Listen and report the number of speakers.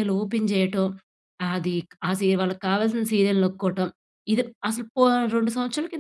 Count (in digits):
1